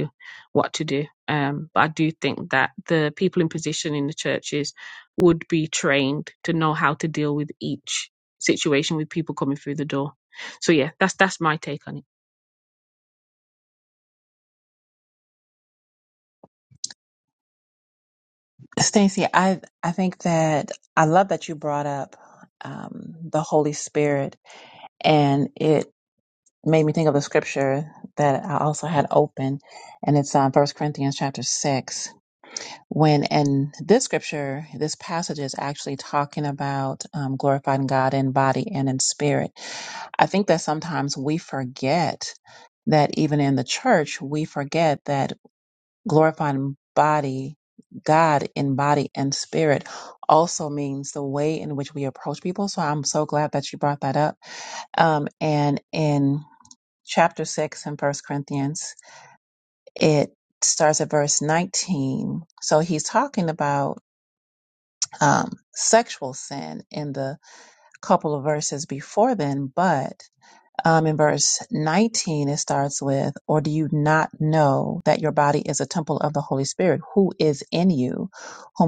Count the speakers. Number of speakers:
two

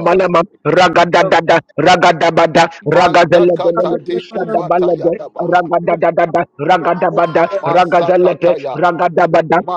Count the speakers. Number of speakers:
two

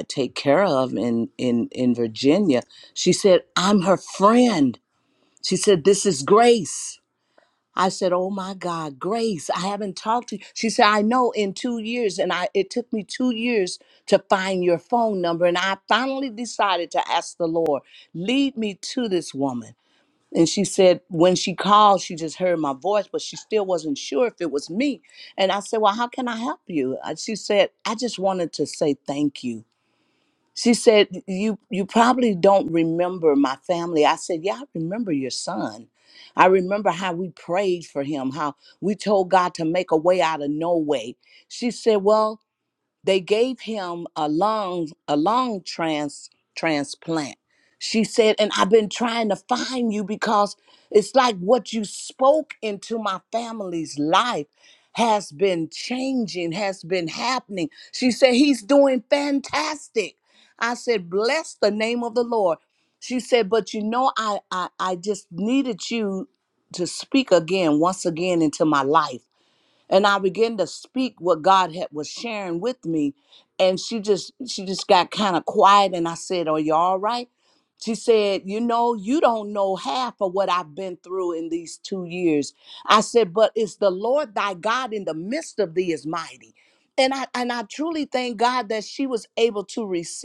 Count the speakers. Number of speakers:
one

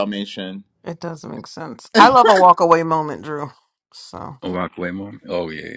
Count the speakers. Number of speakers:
three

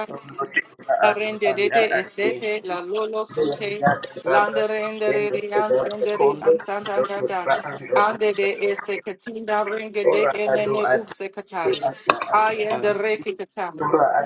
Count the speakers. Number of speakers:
two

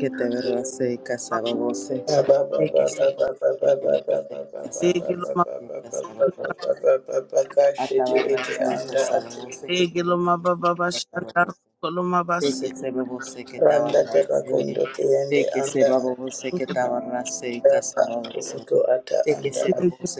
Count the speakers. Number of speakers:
three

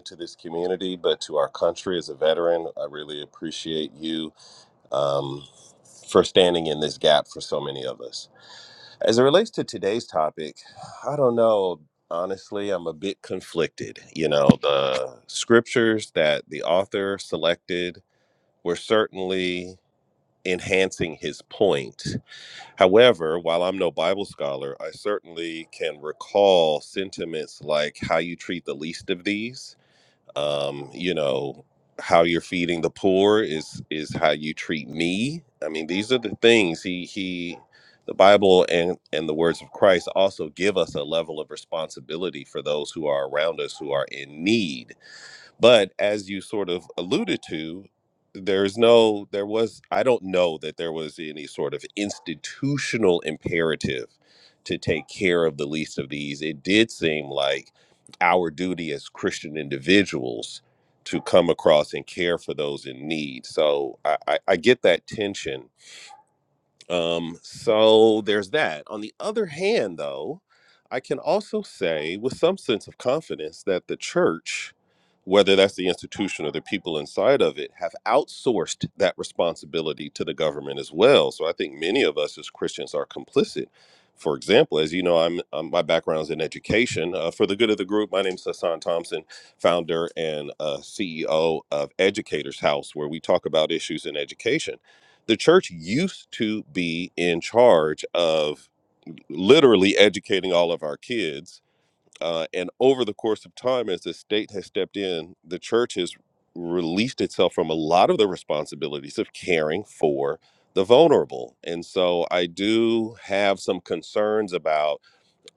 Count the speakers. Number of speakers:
one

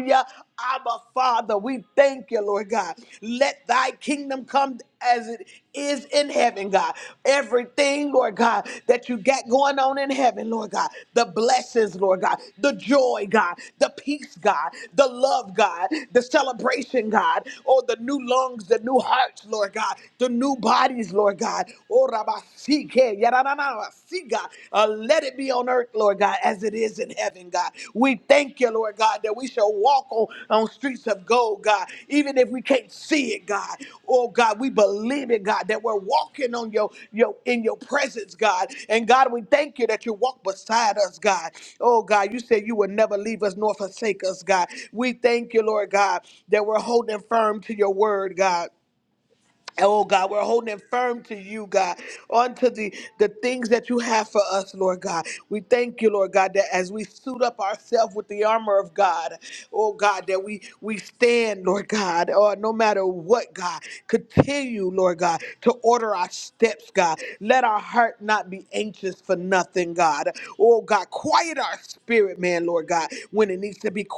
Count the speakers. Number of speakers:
one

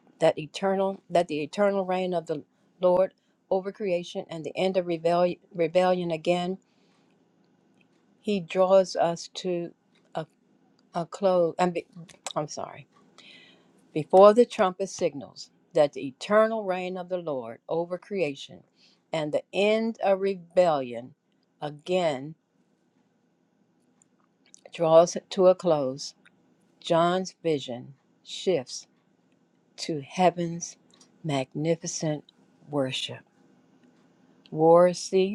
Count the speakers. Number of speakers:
one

